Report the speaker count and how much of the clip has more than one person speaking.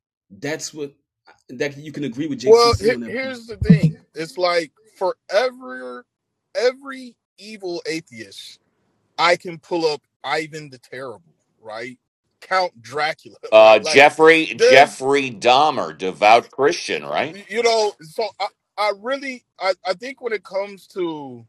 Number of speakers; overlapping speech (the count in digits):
3, about 8%